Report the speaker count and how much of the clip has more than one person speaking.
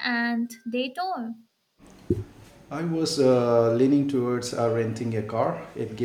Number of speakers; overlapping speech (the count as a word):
two, no overlap